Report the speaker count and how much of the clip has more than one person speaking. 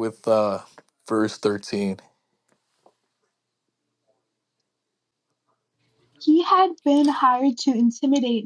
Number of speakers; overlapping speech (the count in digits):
2, no overlap